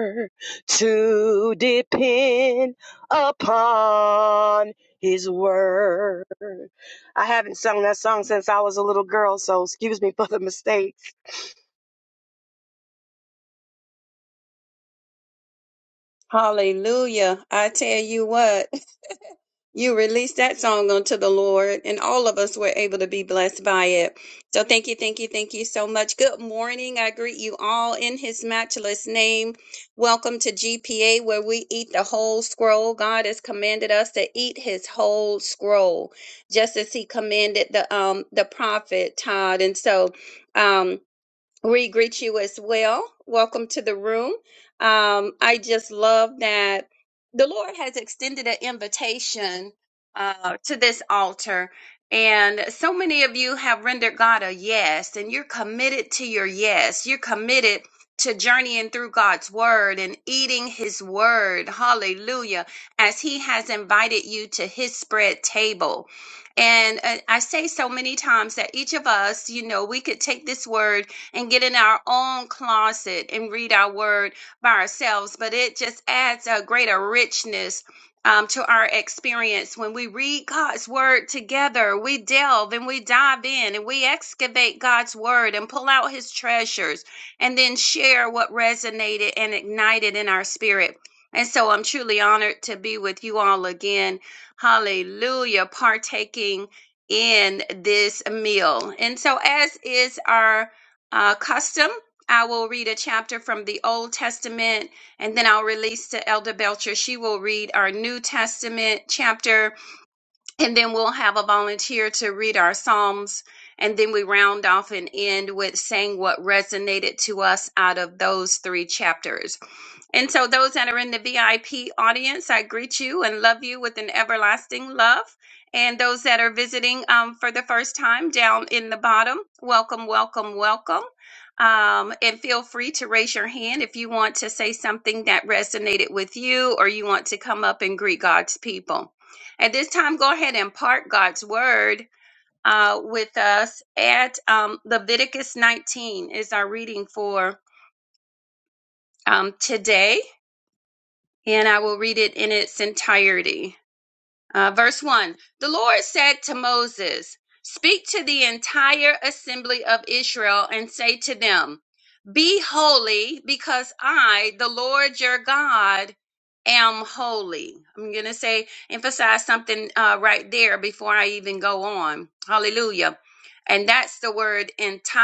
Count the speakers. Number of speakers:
2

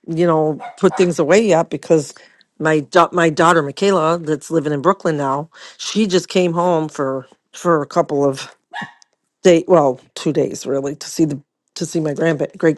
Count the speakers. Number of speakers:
1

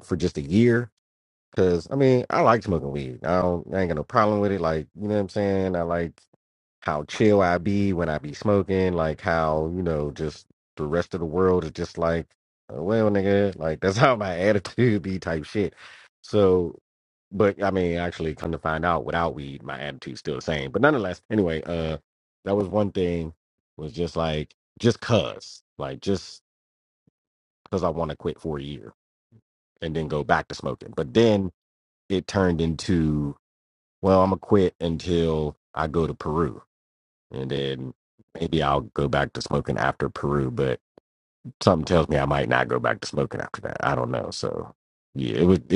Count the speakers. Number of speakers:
1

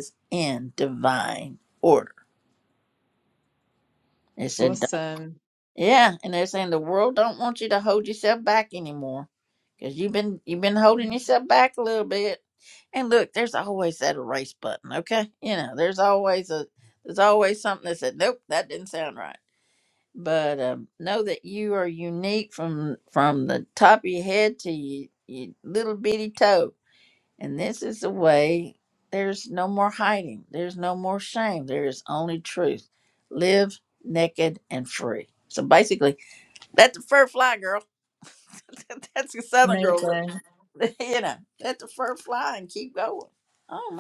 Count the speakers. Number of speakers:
2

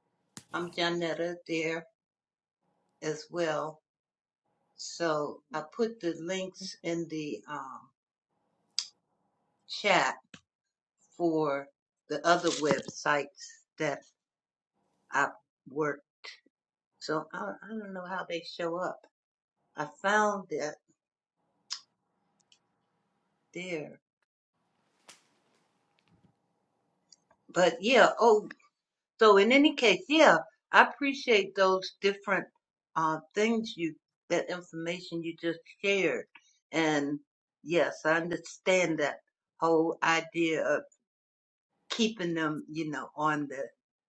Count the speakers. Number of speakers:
1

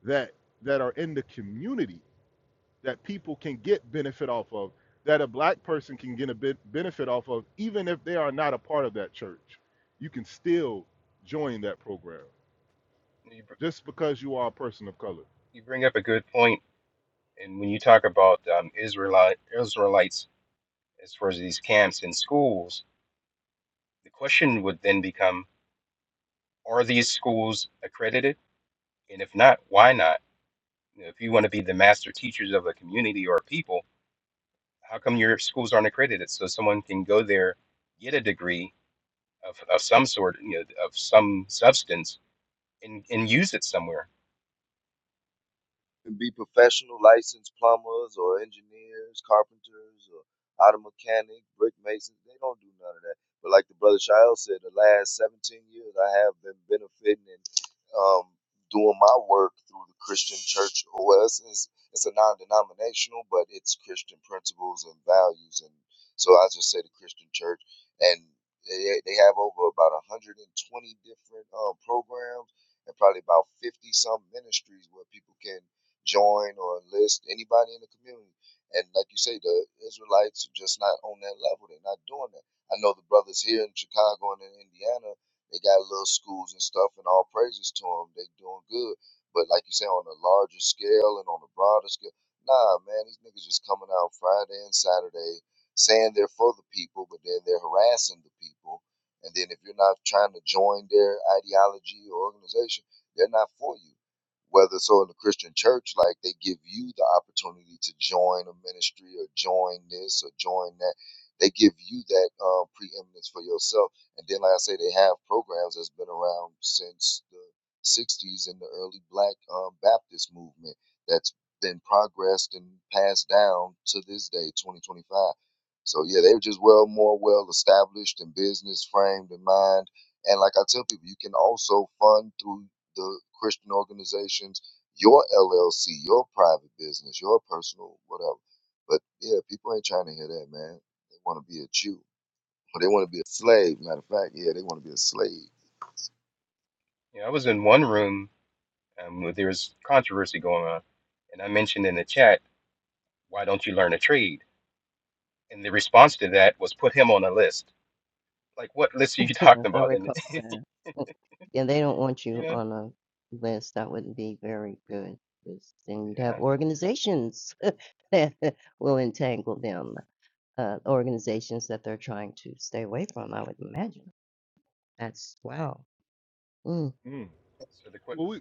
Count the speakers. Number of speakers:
4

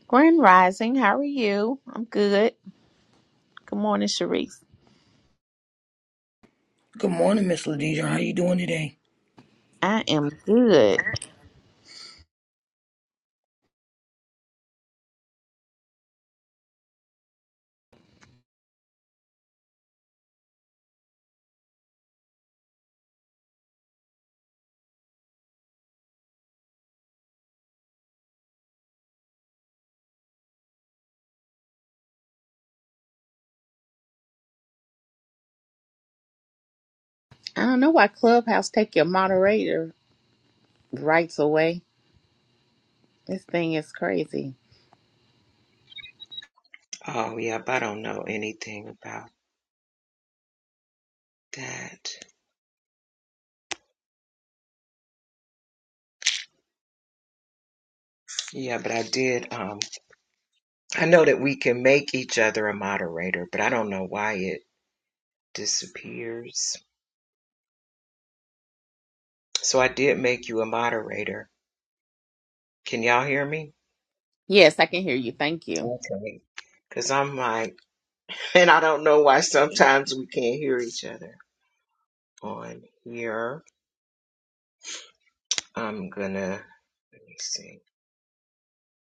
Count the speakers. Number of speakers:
3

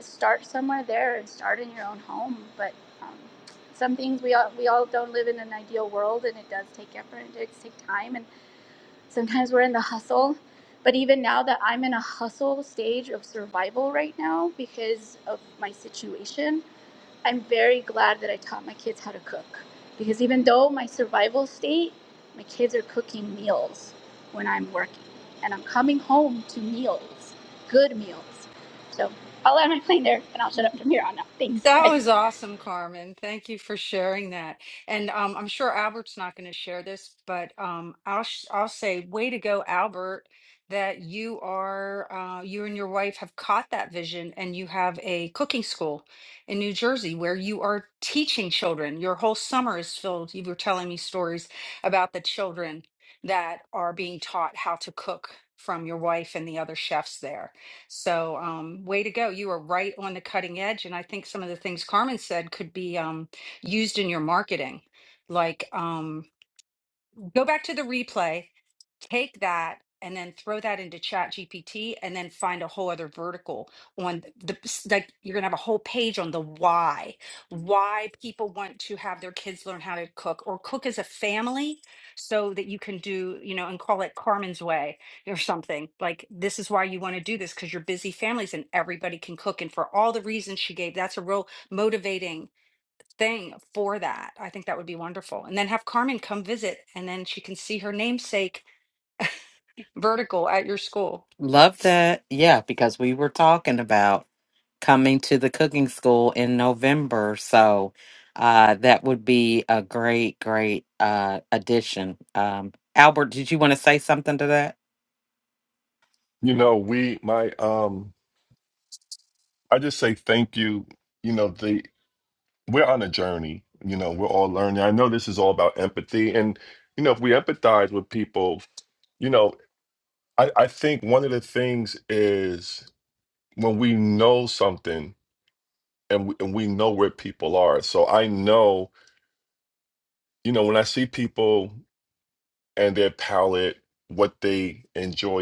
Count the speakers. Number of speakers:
4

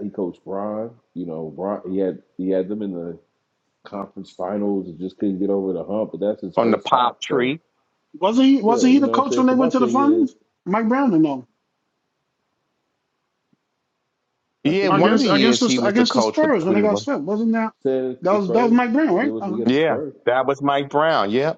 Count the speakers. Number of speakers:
3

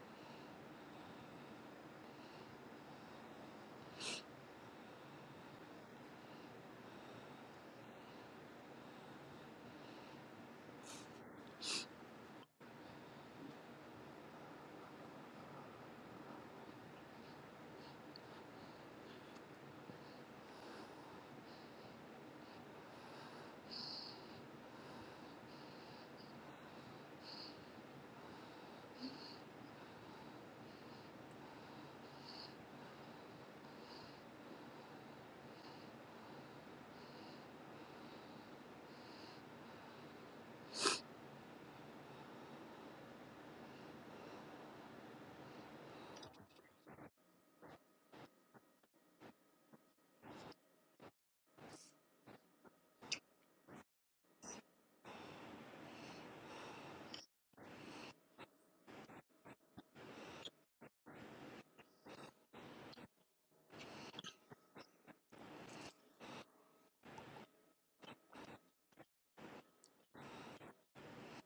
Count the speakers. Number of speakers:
0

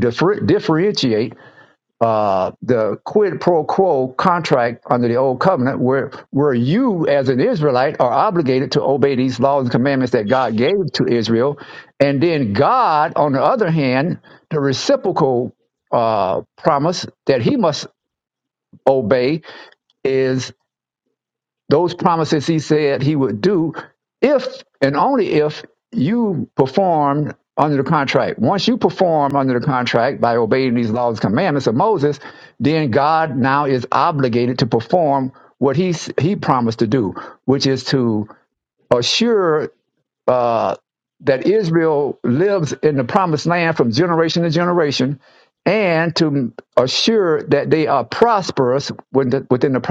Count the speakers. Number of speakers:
1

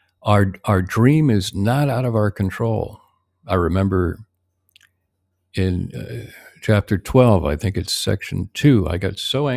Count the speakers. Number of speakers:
1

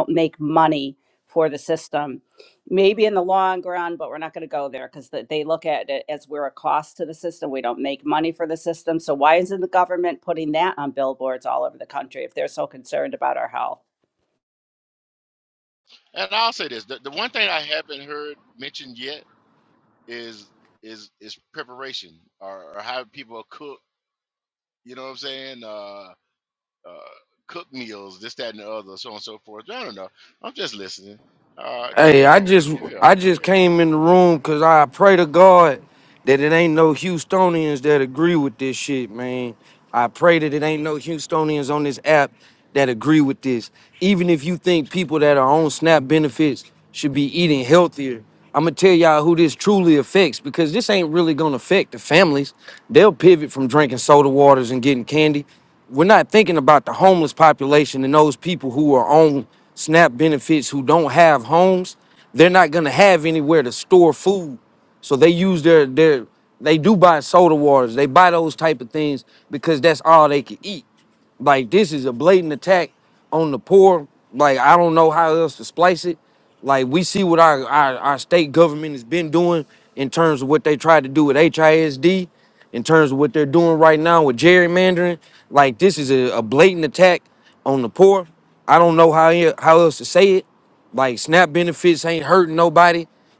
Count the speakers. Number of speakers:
3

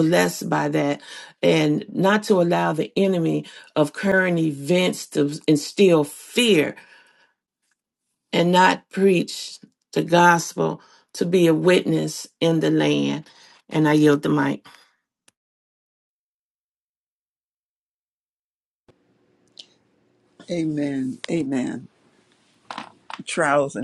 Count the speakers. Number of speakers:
2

